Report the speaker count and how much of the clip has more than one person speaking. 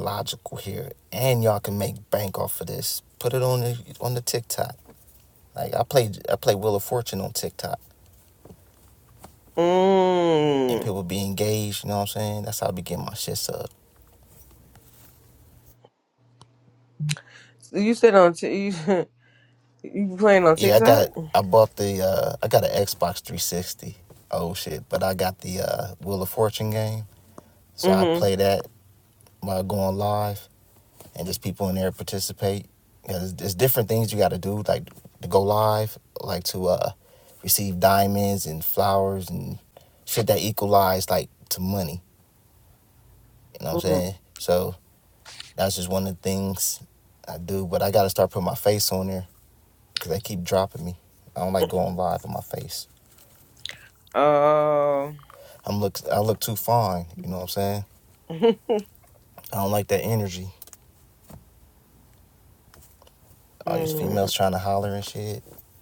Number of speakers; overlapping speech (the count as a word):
two, about 3%